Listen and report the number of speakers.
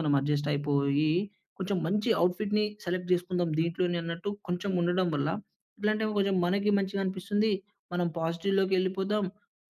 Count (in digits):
1